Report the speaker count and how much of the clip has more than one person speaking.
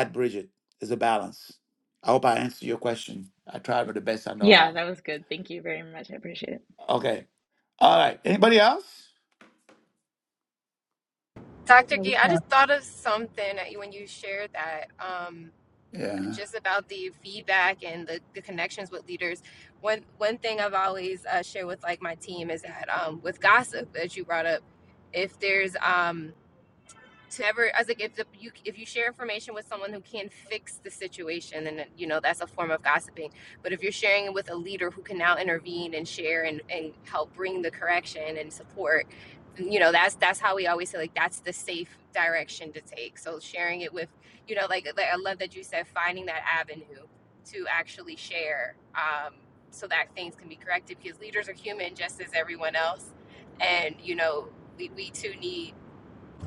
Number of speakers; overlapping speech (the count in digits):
3, about 1%